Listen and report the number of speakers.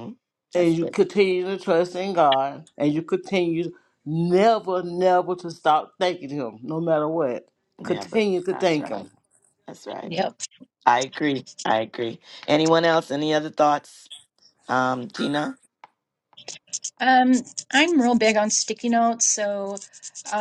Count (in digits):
3